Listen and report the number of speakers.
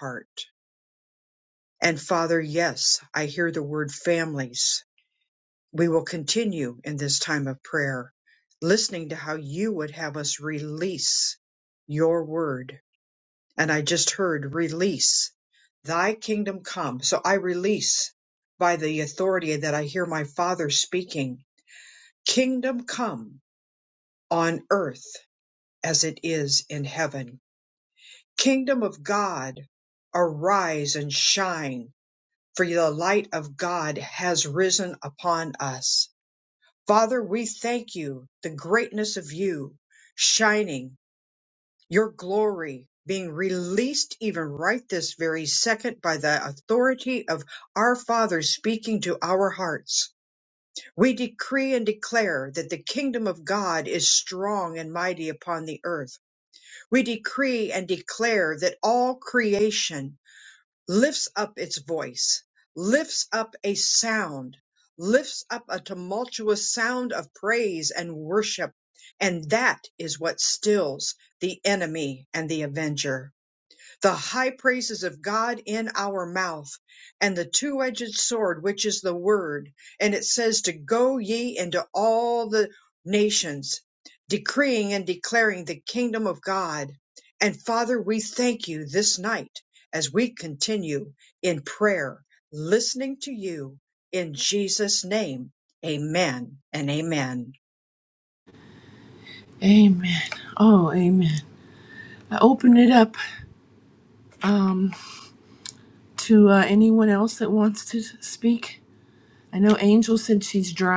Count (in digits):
2